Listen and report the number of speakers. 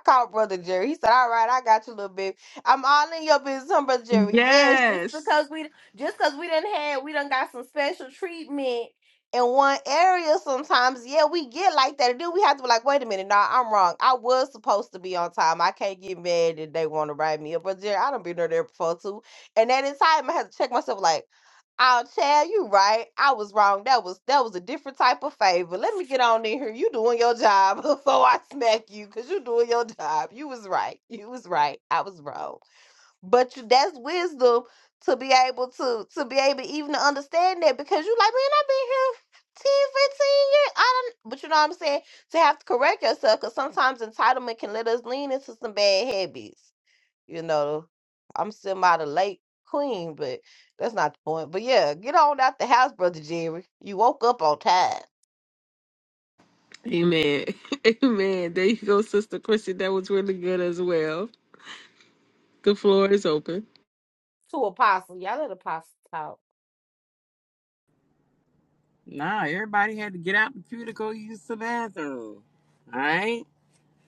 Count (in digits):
3